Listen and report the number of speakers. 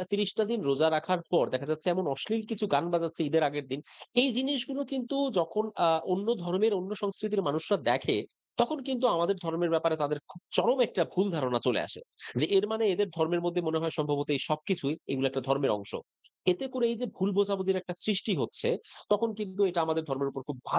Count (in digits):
1